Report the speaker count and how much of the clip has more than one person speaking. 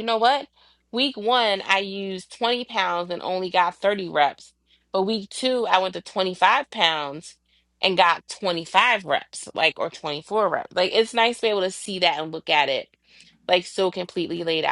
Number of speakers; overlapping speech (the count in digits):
1, no overlap